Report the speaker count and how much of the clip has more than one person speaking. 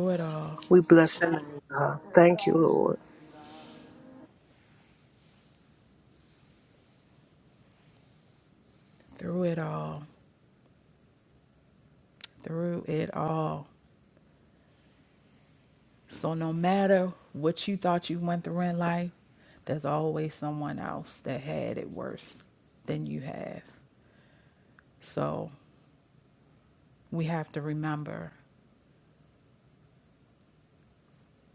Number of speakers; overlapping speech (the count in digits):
2, no overlap